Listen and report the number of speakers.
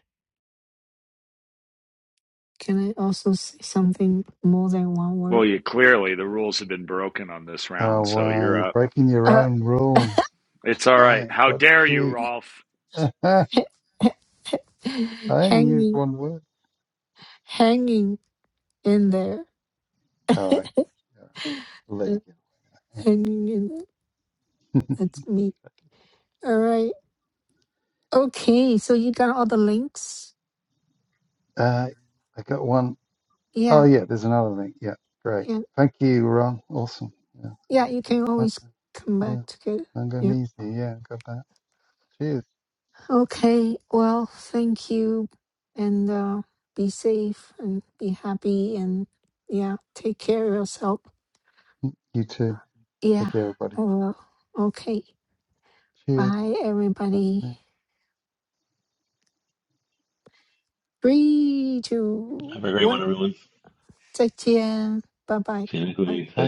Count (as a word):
four